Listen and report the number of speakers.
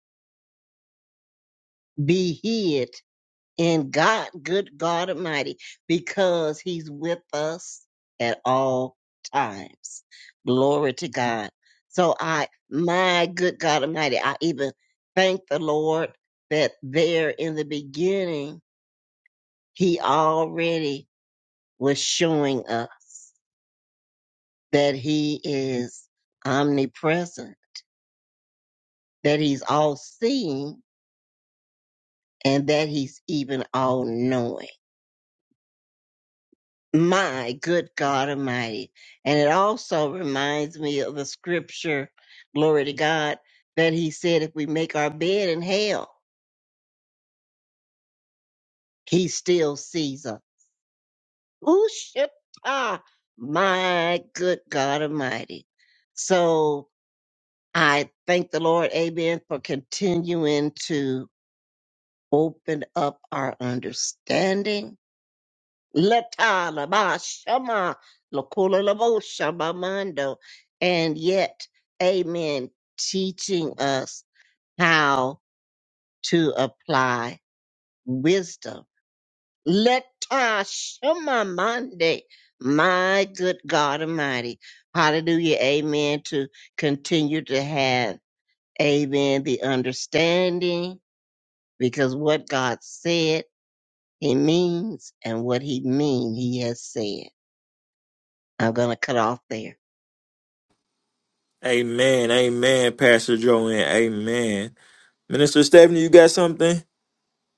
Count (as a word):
two